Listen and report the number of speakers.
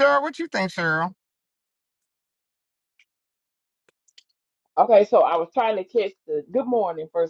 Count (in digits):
2